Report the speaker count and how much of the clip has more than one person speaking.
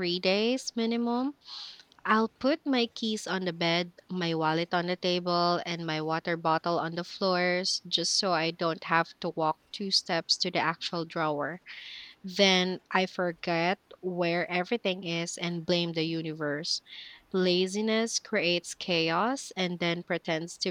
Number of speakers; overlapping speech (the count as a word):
one, no overlap